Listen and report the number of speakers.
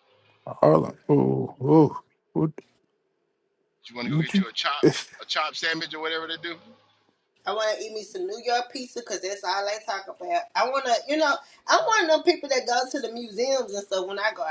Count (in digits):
3